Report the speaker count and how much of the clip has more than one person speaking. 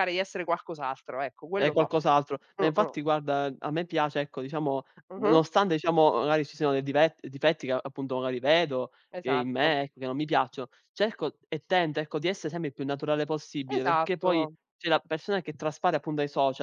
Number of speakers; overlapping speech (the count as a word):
two, about 13%